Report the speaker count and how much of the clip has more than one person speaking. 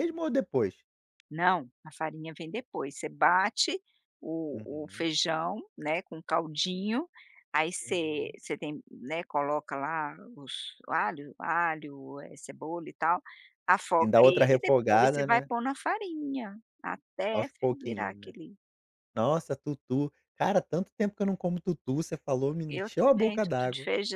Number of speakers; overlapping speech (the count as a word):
two, about 15%